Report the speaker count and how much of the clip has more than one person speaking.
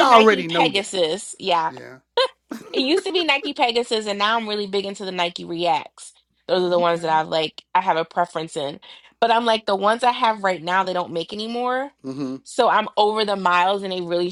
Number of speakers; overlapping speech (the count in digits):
2, about 9%